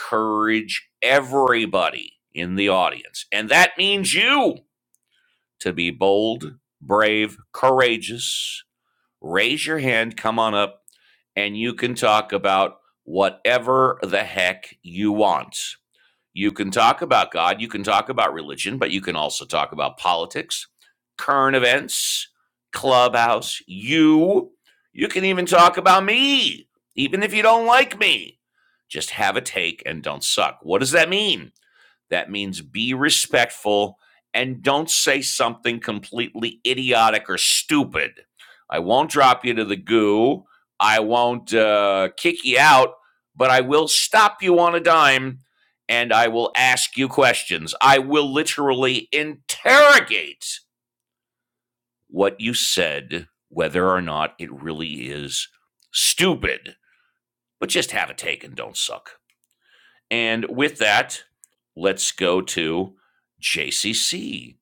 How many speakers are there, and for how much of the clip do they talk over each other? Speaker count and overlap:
1, no overlap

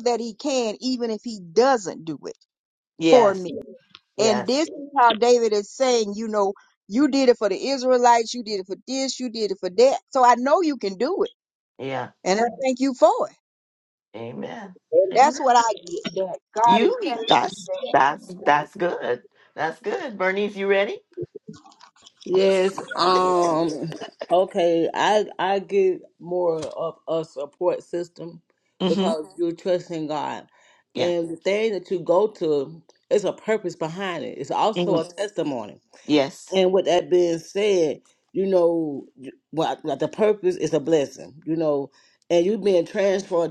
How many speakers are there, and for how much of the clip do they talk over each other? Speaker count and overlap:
3, about 5%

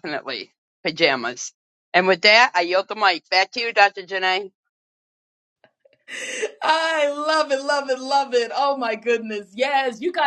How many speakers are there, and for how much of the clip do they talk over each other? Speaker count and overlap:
2, no overlap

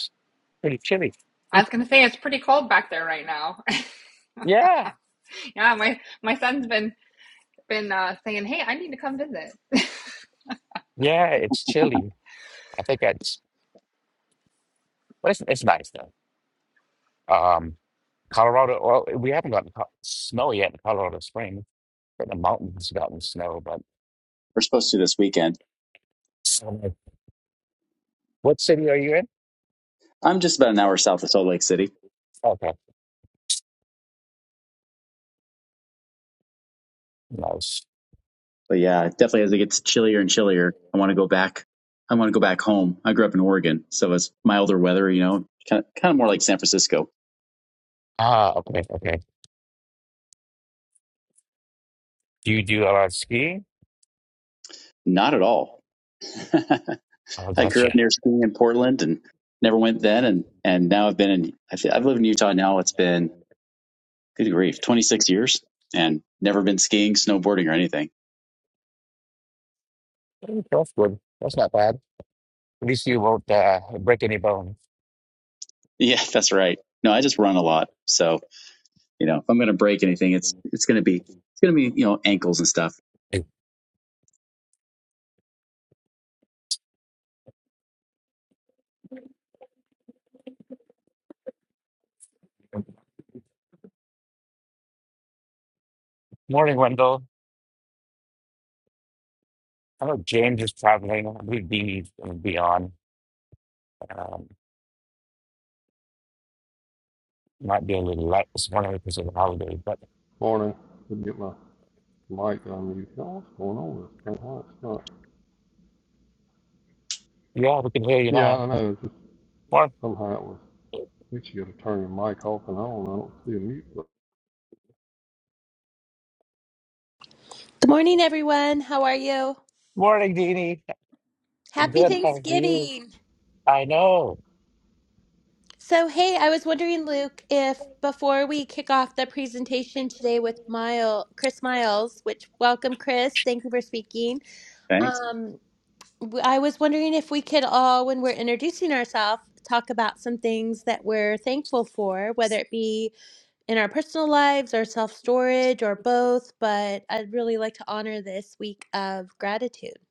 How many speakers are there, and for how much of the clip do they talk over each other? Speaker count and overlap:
5, about 1%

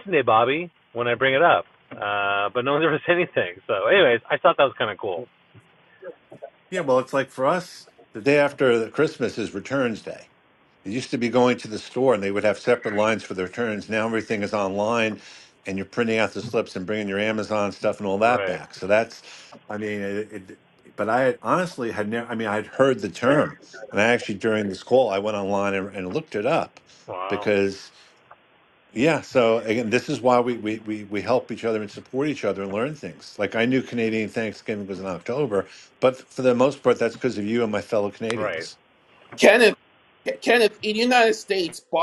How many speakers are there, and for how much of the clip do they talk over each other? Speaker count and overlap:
3, about 2%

